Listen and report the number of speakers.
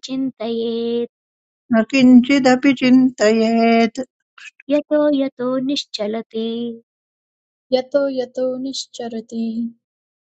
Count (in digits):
3